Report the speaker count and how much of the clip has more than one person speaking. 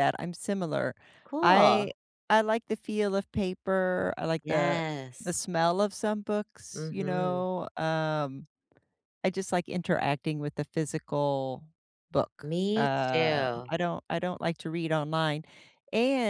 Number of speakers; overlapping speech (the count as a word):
two, about 14%